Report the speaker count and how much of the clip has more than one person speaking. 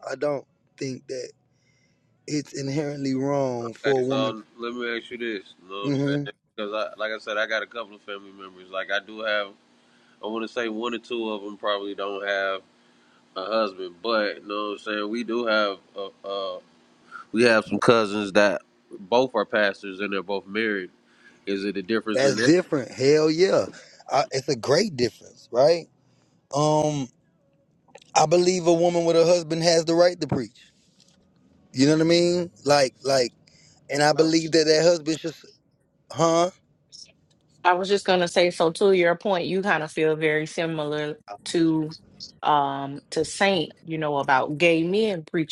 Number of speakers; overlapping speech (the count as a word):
three, about 3%